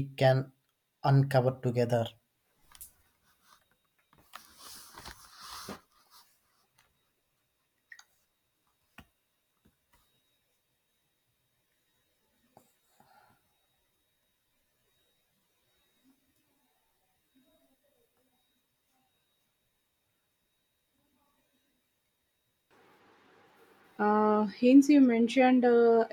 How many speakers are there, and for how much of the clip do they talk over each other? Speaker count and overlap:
2, no overlap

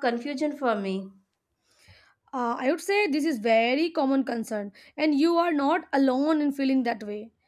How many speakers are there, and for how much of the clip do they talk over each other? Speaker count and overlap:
2, no overlap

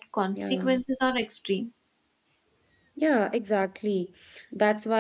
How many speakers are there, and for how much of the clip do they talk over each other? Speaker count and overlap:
2, about 8%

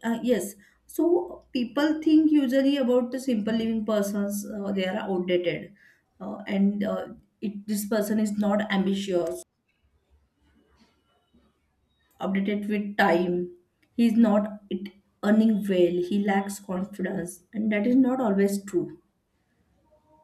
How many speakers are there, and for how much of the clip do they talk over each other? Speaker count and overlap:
1, no overlap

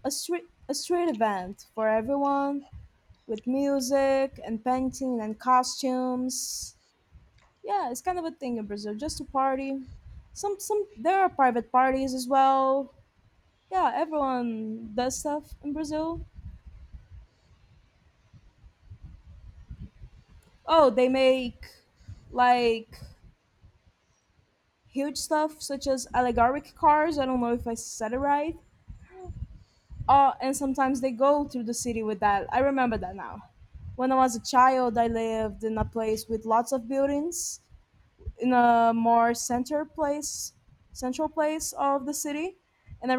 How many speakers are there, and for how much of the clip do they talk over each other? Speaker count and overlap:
1, no overlap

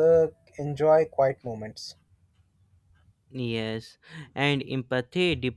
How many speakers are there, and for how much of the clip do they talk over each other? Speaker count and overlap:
2, no overlap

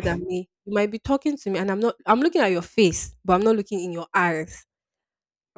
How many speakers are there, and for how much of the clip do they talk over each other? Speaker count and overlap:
1, no overlap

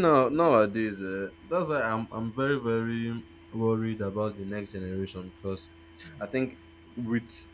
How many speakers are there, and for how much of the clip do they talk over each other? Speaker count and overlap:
1, no overlap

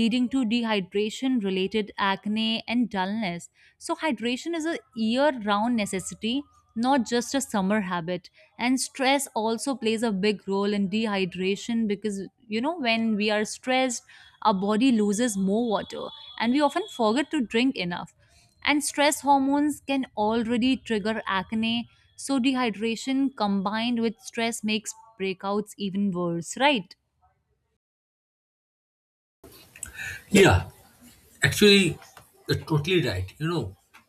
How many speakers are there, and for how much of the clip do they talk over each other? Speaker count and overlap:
2, no overlap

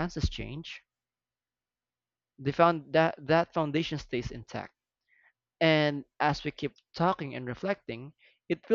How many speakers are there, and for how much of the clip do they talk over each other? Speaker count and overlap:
1, no overlap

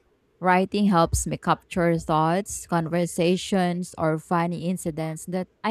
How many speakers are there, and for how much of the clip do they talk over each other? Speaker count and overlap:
1, no overlap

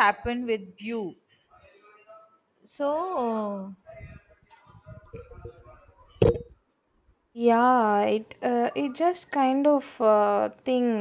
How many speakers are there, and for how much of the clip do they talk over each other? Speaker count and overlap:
2, no overlap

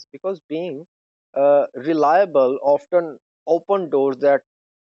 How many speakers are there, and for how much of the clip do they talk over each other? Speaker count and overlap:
1, no overlap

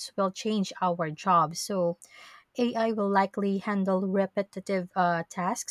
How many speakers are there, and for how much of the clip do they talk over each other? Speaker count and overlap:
1, no overlap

